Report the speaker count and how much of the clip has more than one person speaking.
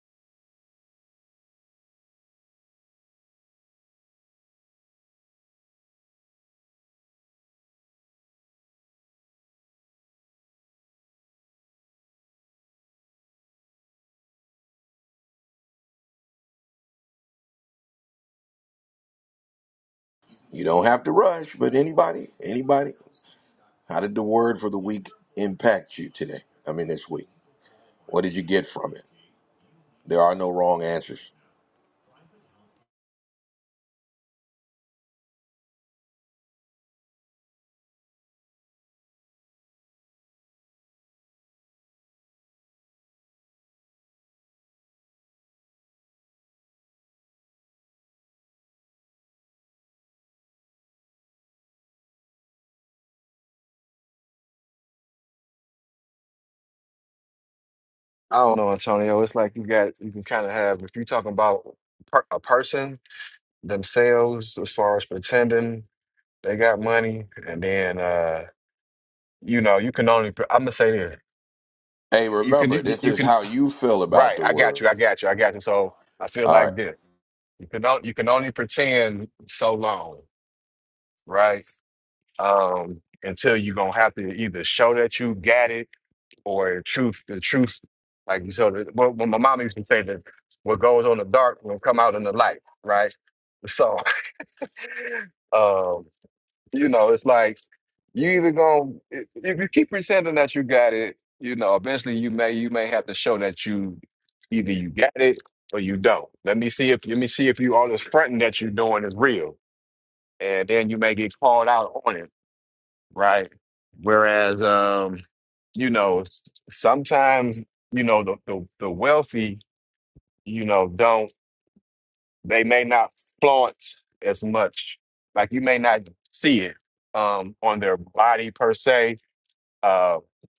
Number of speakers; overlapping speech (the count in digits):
2, about 1%